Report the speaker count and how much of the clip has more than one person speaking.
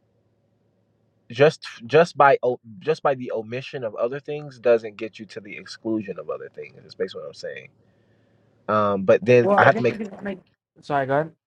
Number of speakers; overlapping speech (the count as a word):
two, about 5%